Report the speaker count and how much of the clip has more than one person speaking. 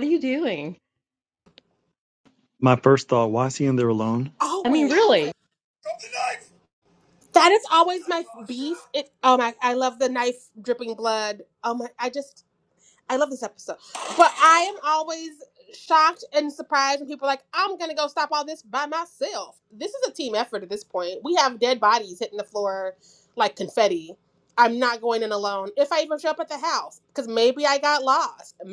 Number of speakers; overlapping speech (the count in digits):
3, about 1%